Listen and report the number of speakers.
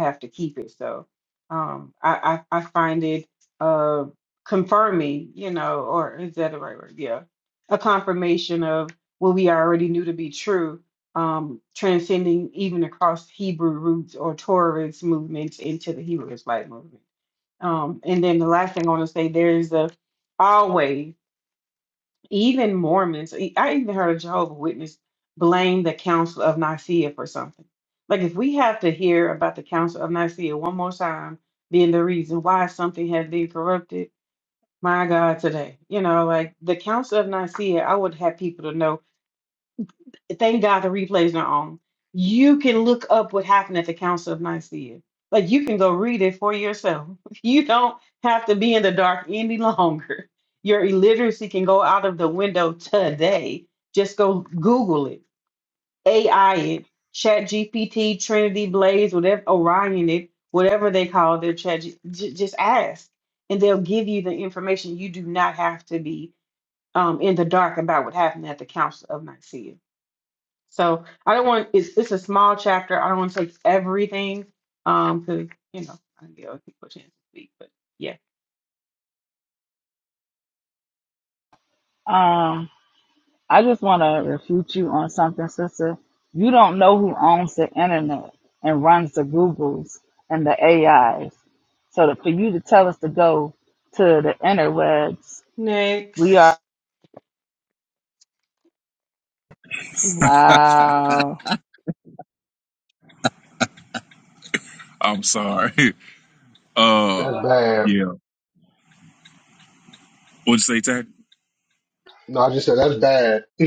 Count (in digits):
4